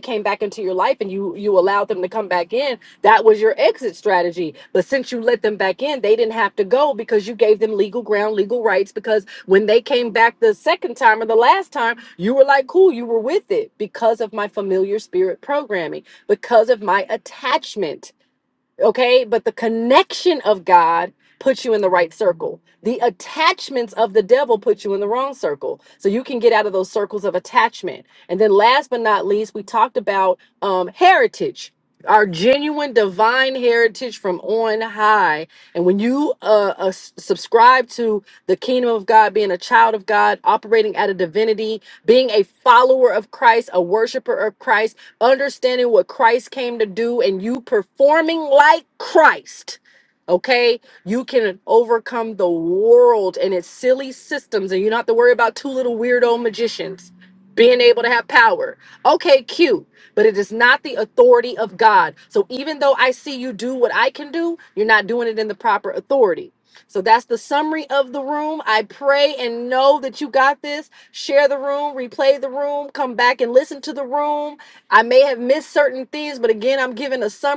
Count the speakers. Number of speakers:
one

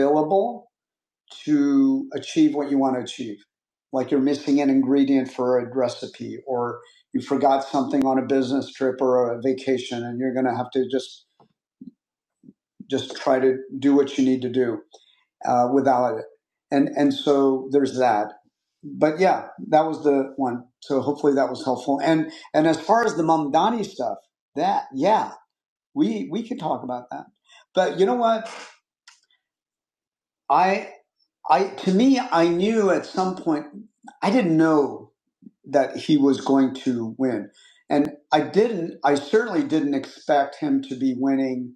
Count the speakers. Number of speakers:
one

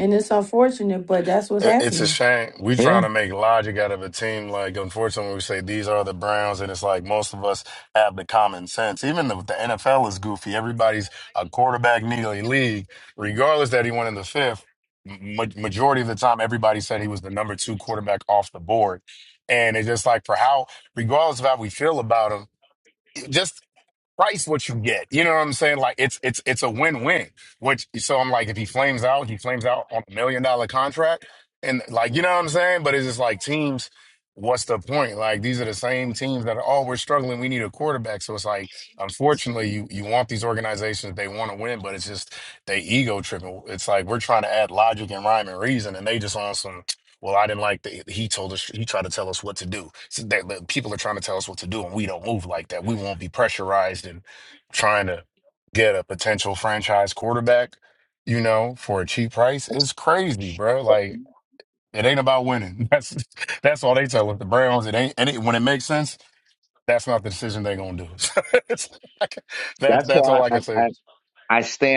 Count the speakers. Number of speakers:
three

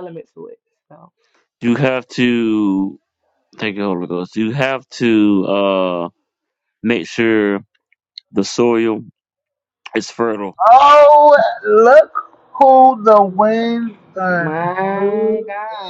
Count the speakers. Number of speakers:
three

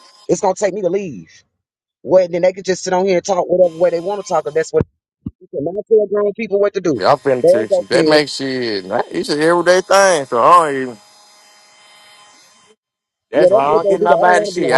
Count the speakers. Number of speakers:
two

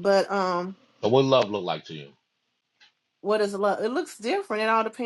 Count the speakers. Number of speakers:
two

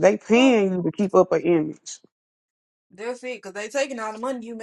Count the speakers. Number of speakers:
two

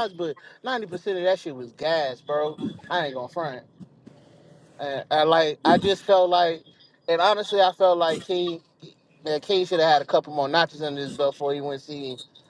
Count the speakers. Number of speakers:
one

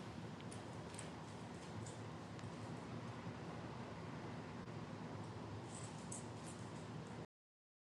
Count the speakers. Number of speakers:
zero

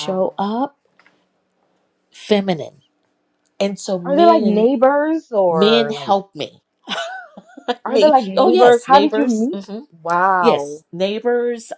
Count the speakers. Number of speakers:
two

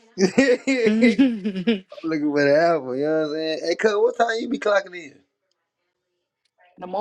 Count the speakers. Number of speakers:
two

